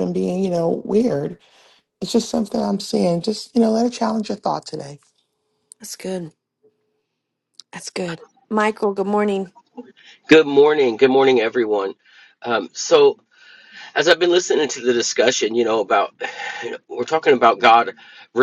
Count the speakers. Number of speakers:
3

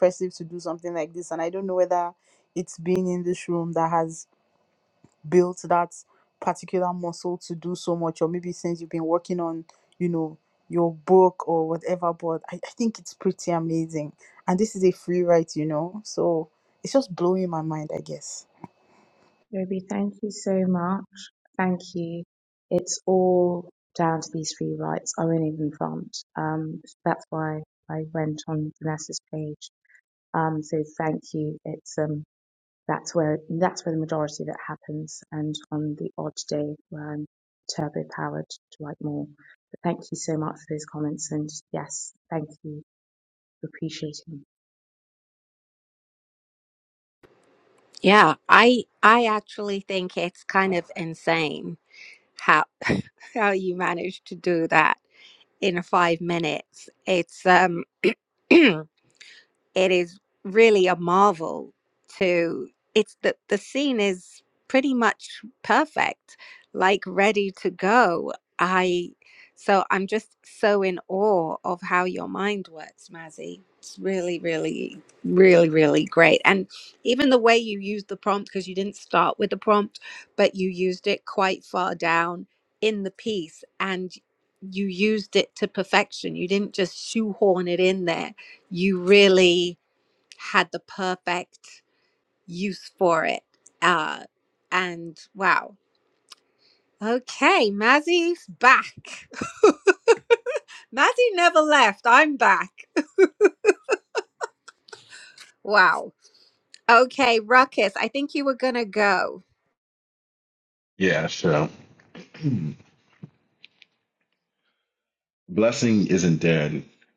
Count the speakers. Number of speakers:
4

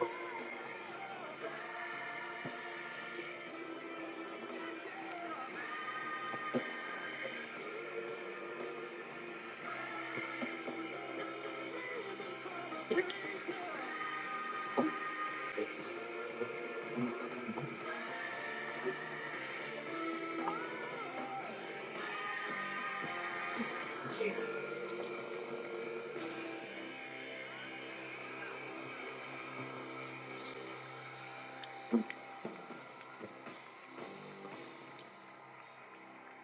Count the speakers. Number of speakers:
0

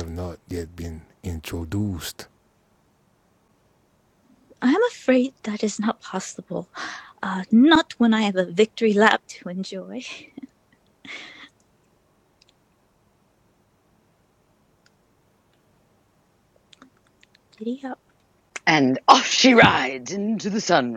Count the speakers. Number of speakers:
3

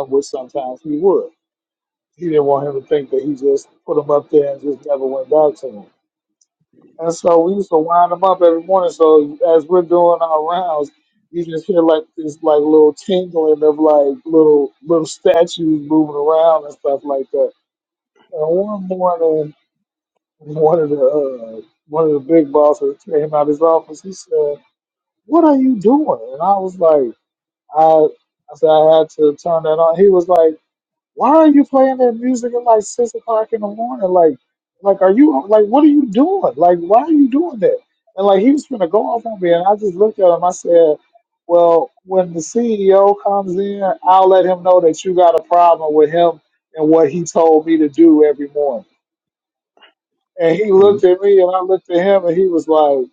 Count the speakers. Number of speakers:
1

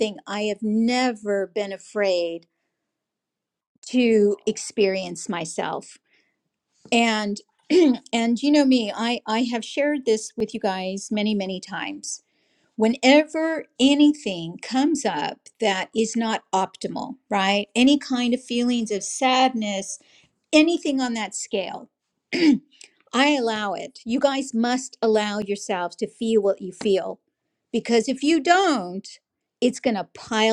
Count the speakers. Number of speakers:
1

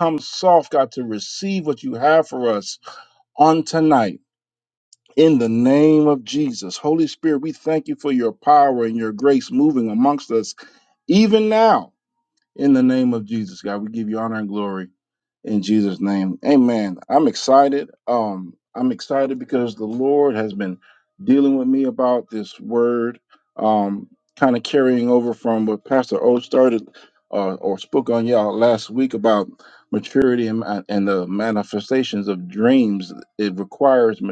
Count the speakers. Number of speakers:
1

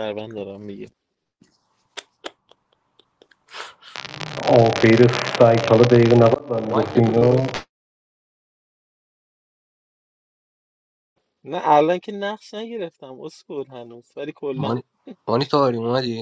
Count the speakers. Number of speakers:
3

